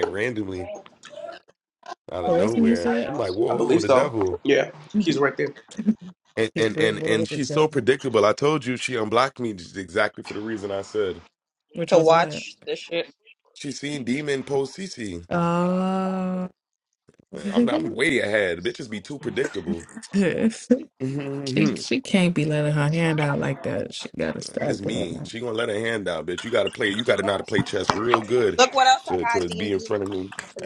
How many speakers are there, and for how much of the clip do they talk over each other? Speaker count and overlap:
4, about 16%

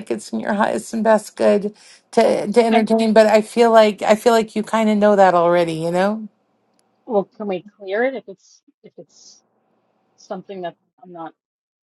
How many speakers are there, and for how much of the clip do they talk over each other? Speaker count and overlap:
2, about 2%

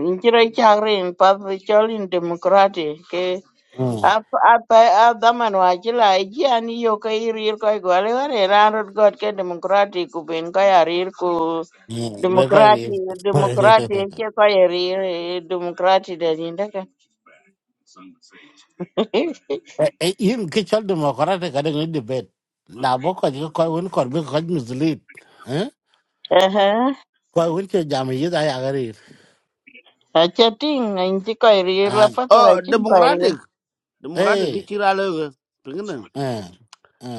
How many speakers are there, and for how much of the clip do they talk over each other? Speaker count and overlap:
3, about 8%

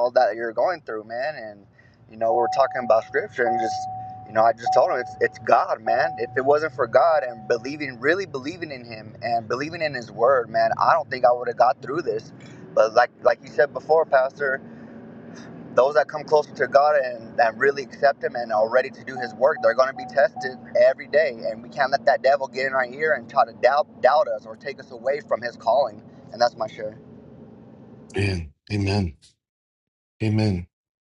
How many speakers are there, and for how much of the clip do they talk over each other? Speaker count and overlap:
2, no overlap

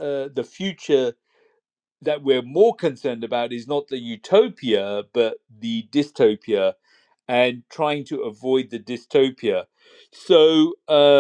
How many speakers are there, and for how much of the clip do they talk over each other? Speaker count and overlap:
1, no overlap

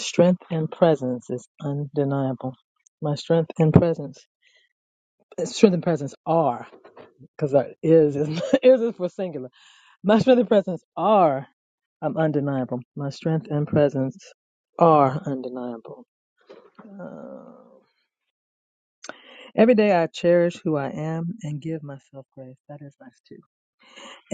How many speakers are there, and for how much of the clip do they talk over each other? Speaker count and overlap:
1, no overlap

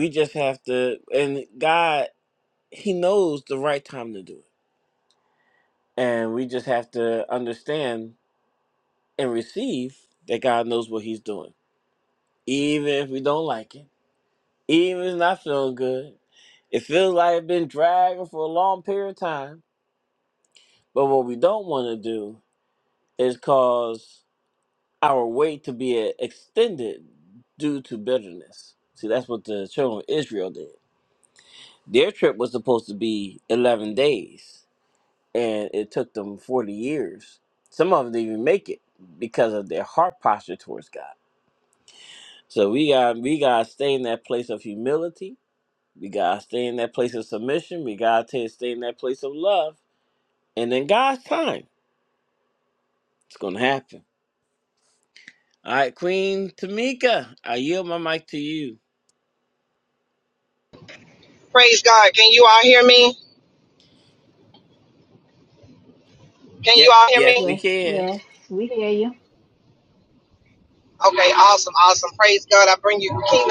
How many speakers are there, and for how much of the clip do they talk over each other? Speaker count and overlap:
3, about 2%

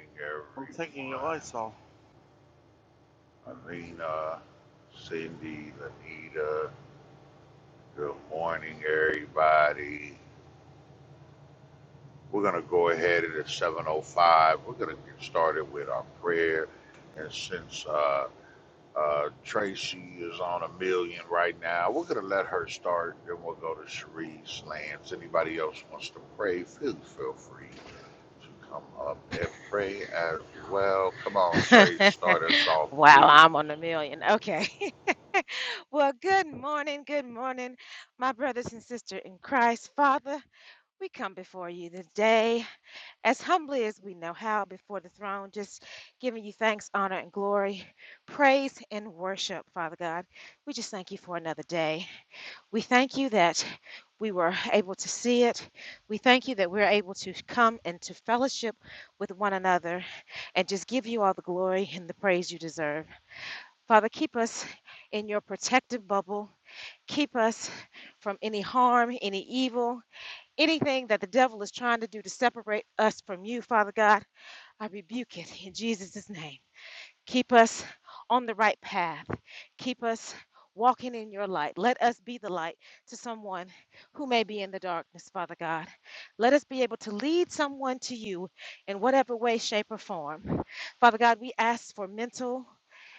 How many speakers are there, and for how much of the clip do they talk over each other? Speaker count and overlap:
3, about 1%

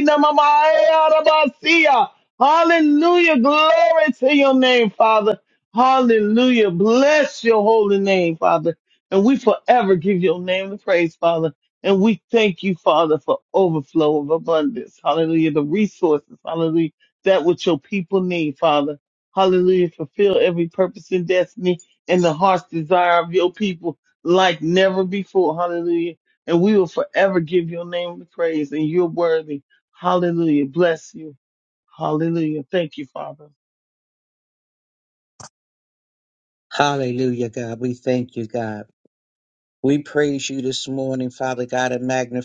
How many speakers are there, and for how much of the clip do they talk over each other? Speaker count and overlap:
2, no overlap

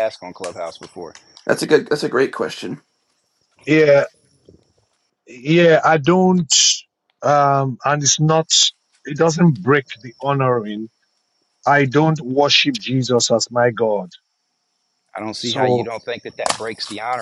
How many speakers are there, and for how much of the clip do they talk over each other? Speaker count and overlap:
3, about 2%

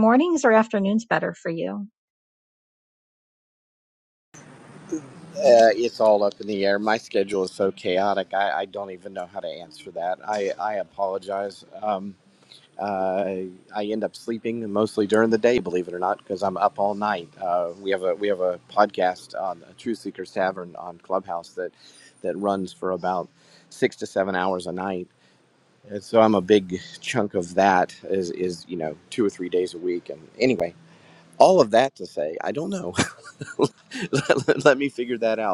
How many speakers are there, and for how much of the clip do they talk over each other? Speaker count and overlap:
2, no overlap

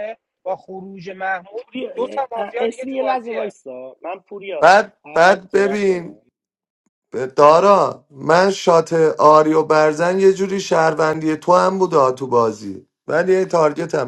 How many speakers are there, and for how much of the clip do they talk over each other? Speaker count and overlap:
3, about 17%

